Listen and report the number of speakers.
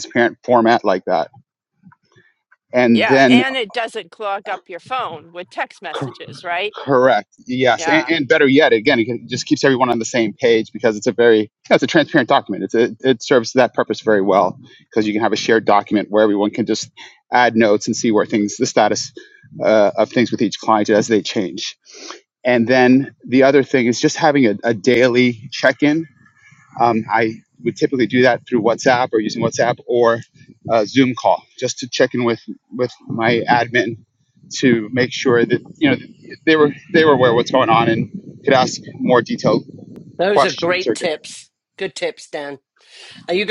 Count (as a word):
three